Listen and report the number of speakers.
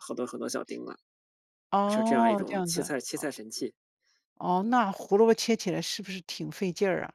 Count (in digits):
2